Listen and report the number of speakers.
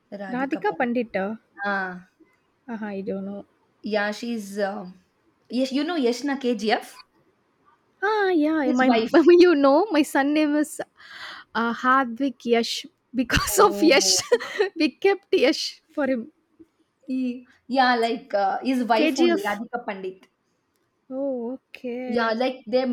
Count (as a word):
two